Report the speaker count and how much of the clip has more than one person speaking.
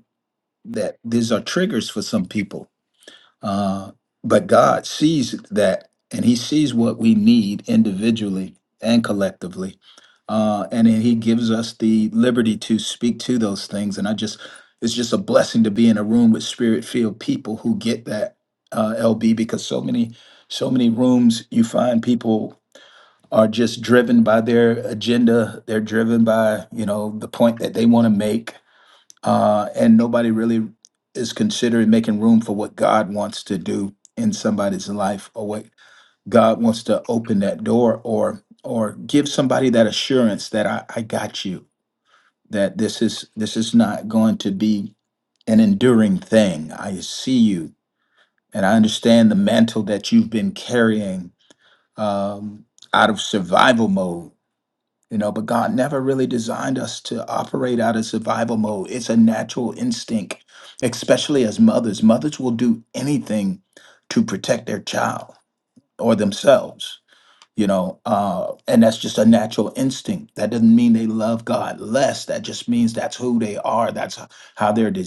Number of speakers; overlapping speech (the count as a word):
one, no overlap